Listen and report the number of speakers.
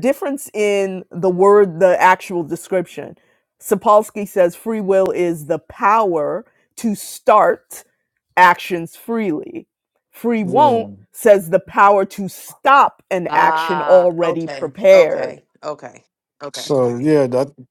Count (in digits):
3